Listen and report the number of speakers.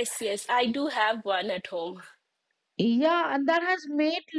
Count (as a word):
two